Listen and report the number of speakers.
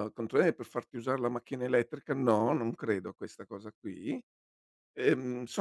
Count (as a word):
one